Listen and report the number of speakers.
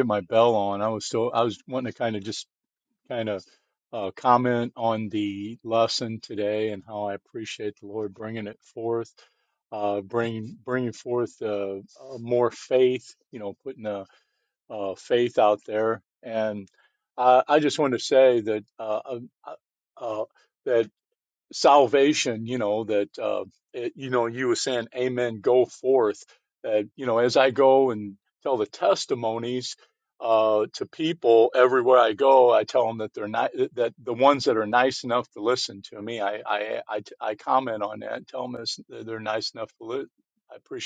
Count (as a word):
one